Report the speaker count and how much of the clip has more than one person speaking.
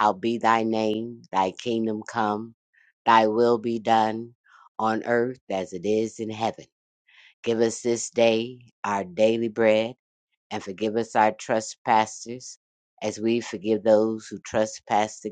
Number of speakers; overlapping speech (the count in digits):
1, no overlap